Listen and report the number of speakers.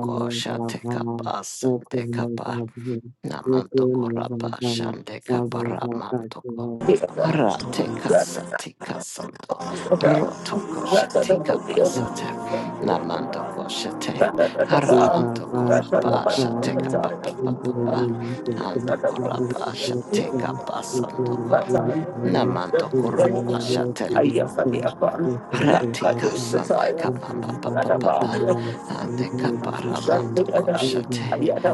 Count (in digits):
3